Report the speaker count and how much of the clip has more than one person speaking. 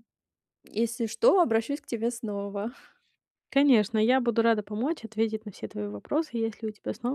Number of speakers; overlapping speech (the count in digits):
2, no overlap